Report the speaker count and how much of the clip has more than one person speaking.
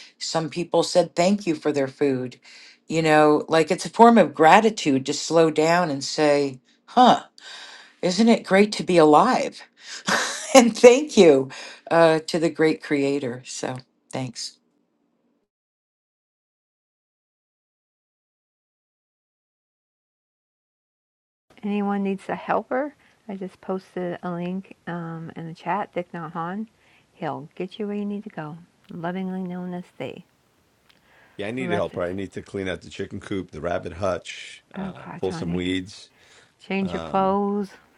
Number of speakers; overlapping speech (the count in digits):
3, about 5%